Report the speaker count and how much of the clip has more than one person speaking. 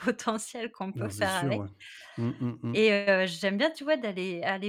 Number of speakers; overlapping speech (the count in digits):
2, about 15%